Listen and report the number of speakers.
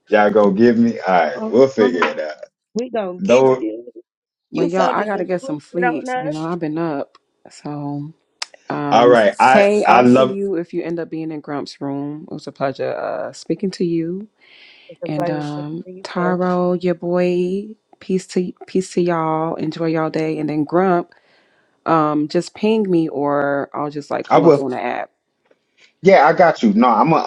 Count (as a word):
three